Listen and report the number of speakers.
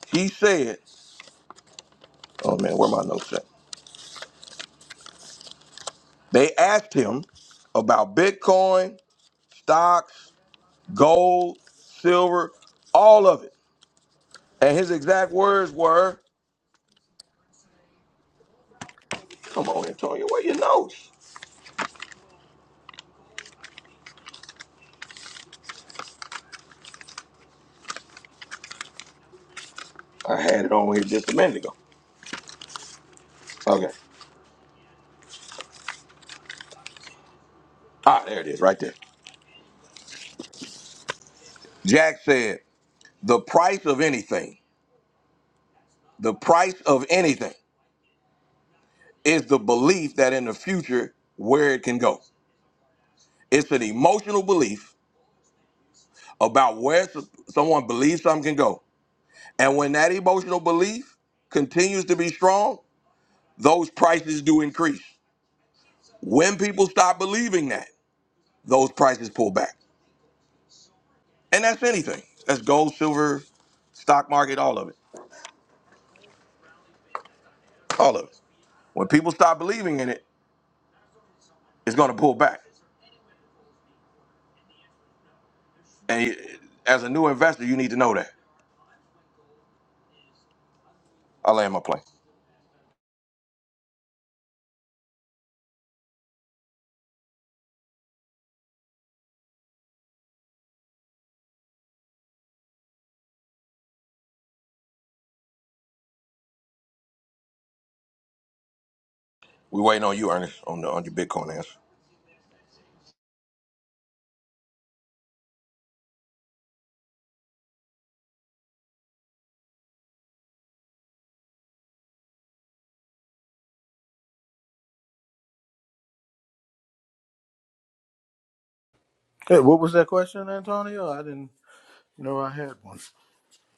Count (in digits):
2